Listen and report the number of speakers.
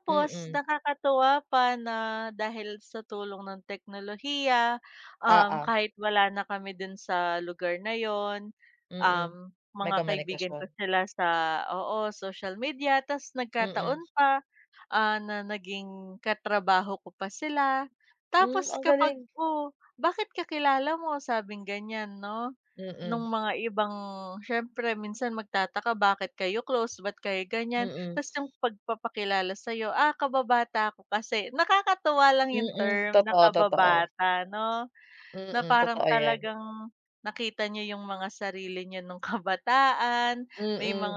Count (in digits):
2